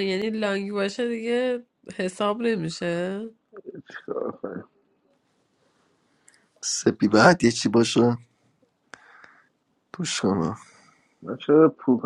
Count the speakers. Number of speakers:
three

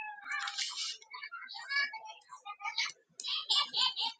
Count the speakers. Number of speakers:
zero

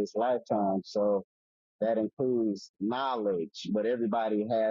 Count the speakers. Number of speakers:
one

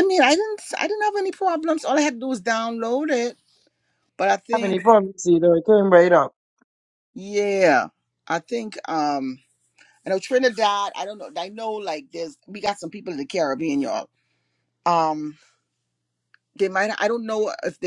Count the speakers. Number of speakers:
two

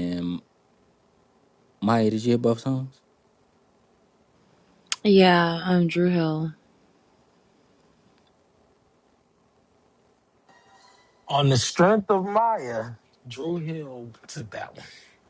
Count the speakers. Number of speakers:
three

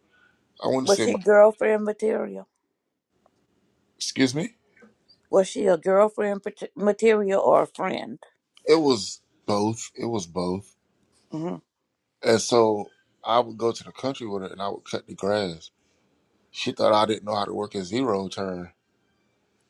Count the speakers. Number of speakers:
two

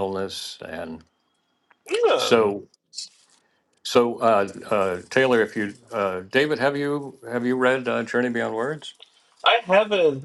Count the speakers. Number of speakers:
two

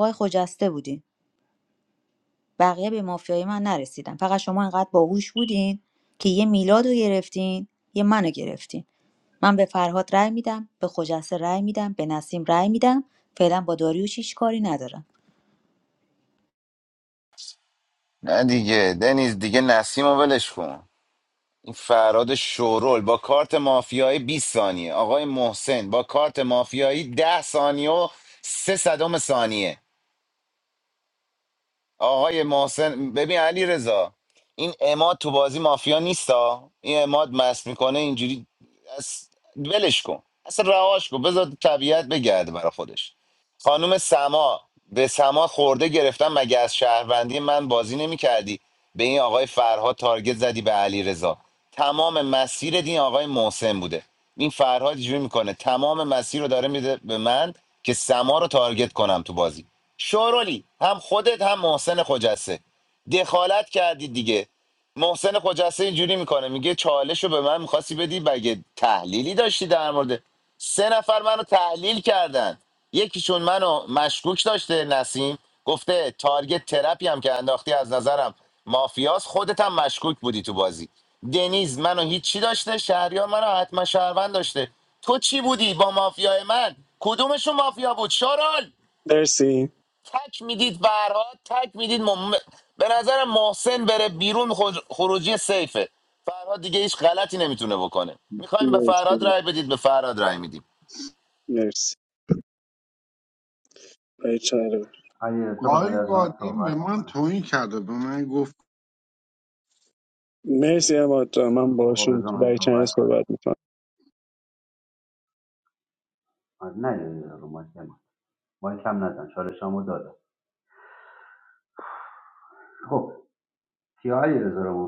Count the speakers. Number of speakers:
five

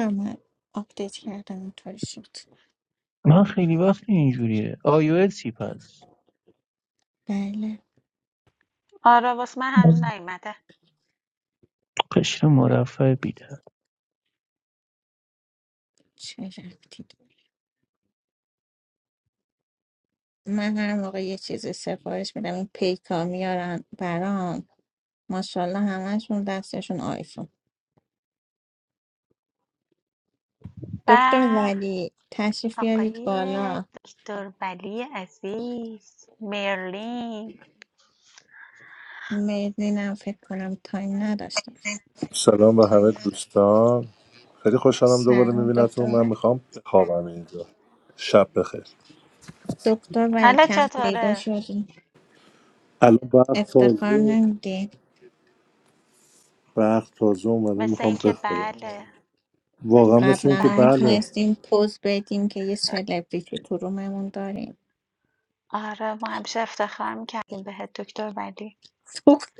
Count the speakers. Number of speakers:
four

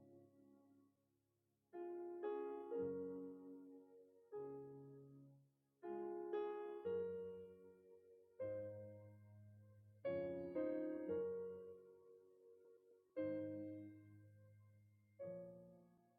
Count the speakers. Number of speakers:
zero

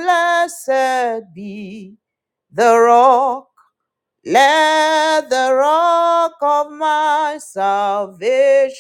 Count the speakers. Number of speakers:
one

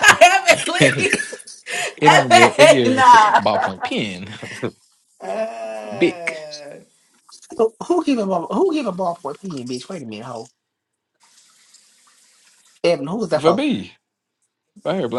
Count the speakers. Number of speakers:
three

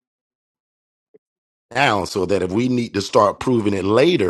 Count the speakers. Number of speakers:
one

